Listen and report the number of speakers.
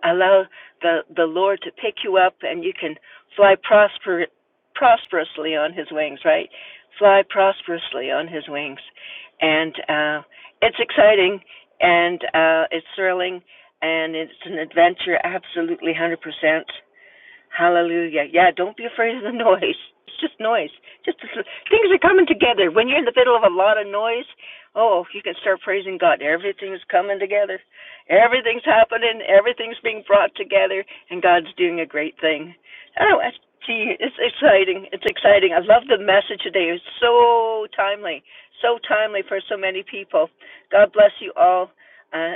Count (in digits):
1